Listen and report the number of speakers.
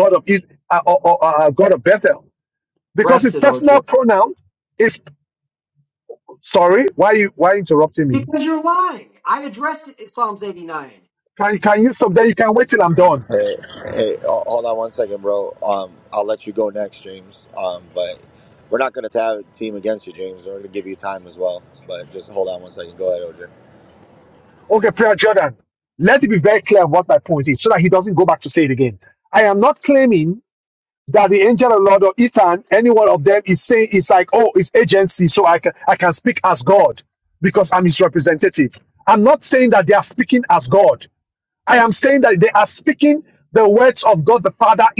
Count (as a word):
three